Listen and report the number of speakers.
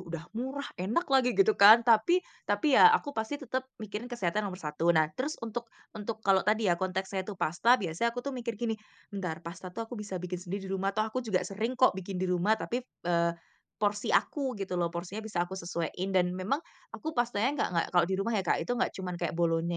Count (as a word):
one